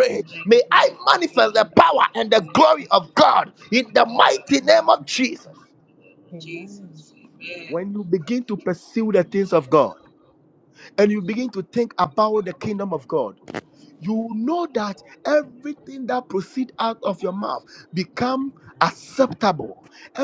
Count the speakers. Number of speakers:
two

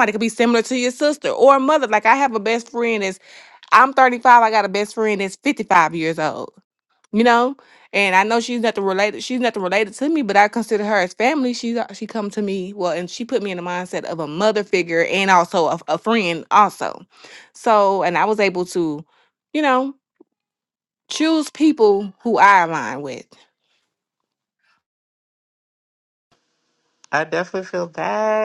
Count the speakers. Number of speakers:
two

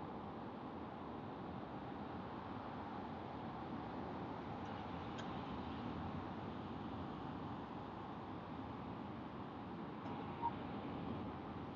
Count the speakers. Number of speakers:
zero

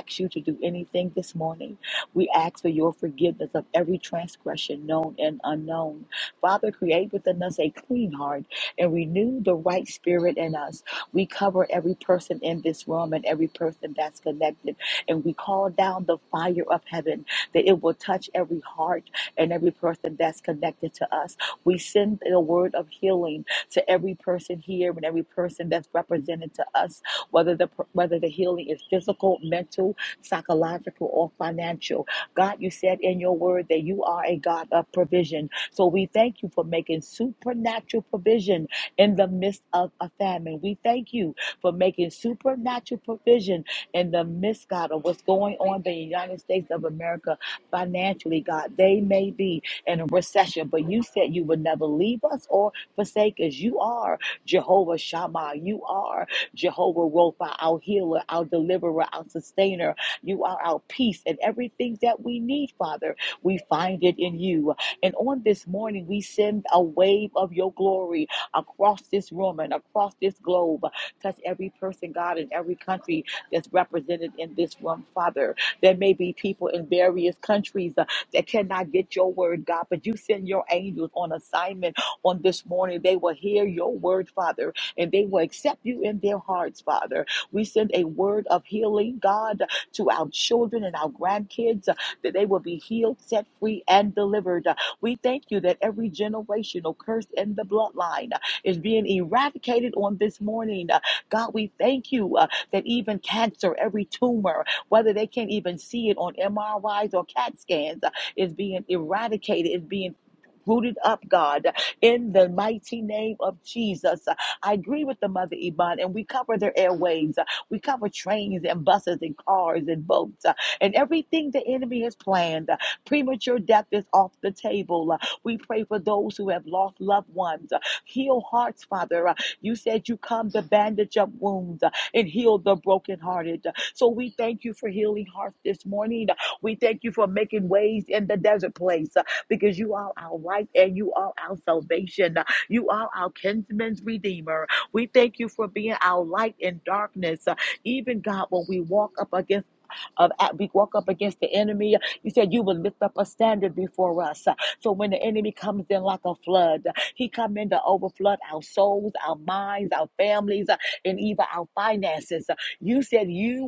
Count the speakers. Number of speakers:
one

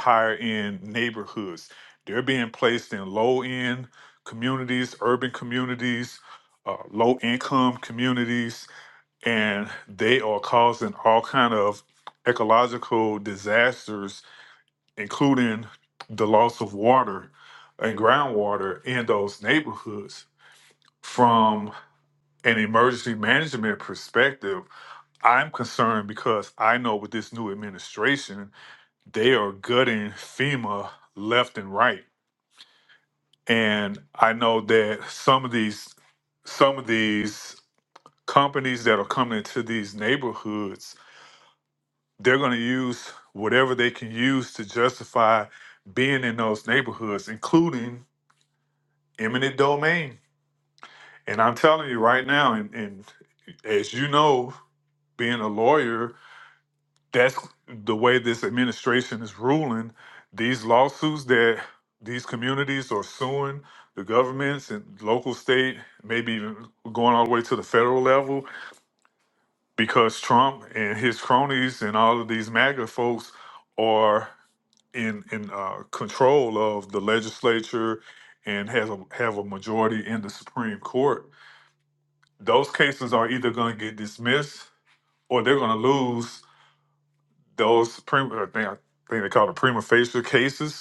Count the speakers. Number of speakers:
one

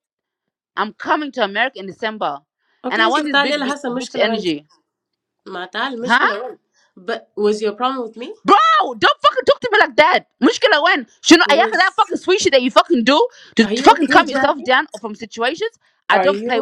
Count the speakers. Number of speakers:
two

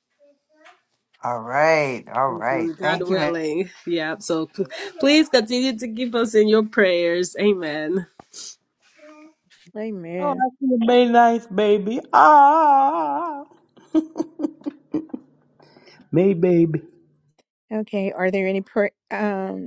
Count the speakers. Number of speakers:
four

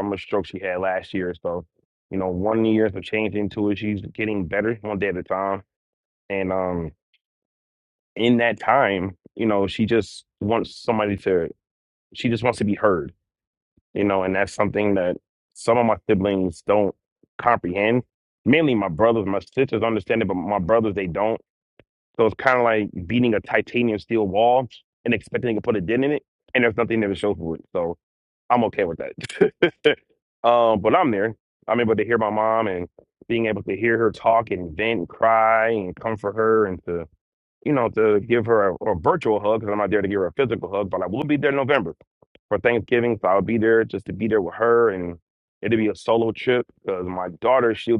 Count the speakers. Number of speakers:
one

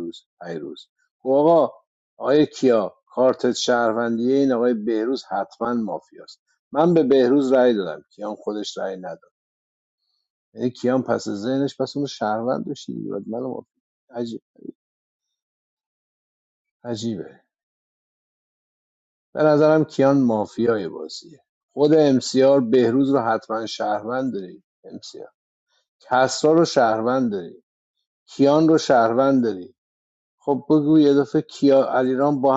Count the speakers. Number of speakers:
one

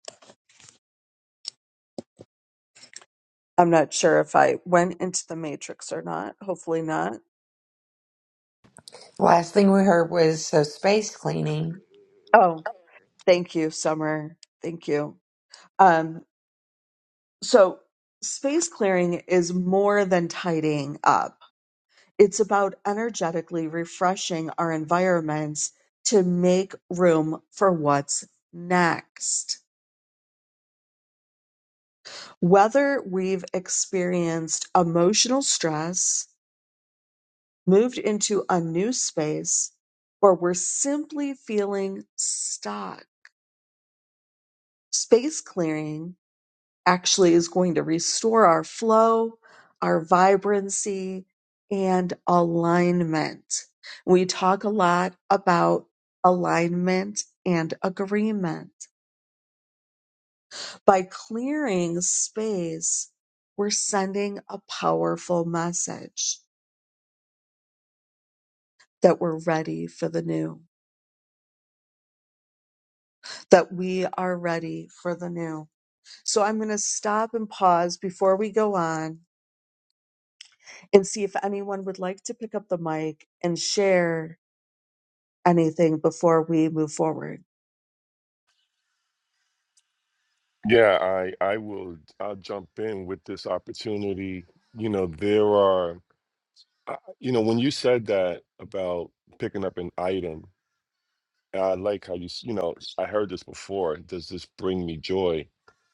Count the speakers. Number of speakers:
three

